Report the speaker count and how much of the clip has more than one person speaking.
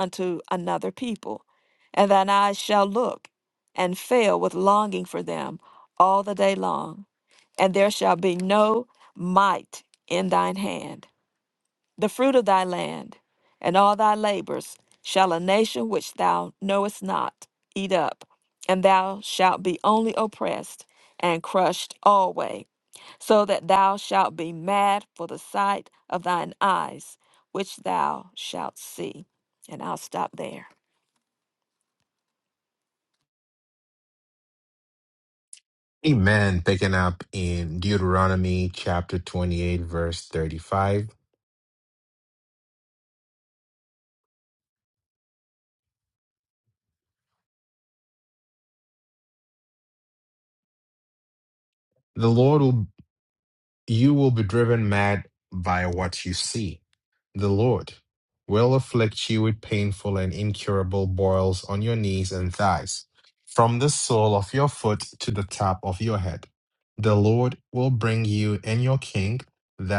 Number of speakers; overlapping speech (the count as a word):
two, no overlap